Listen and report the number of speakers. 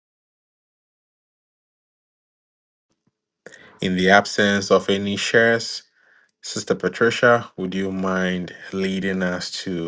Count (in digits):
1